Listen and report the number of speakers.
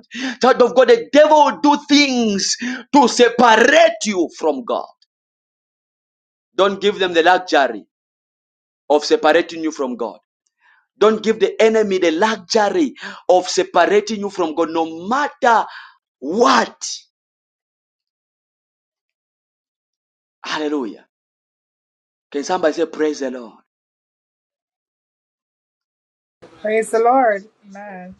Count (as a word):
two